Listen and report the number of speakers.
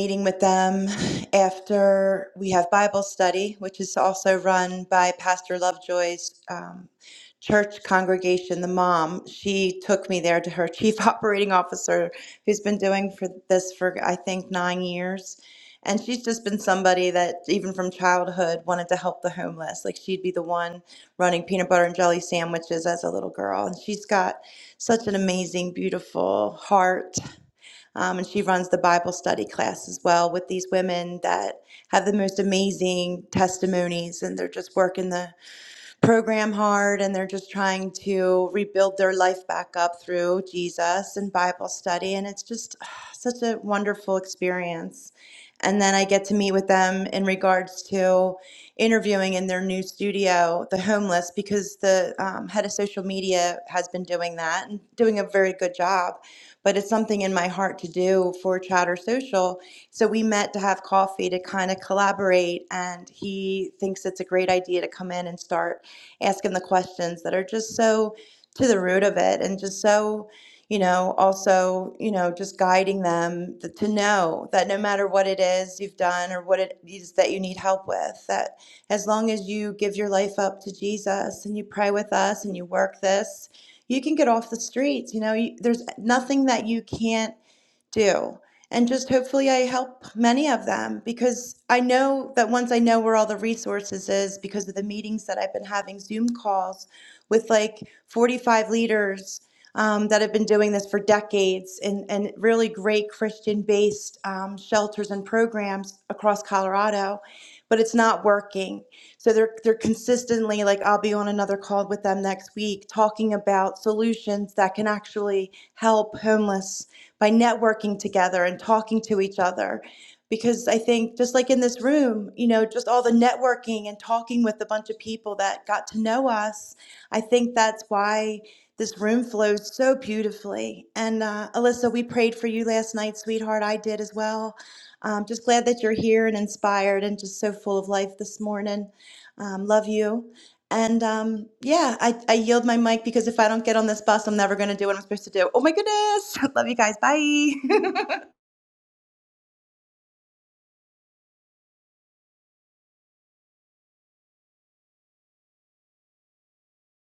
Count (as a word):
one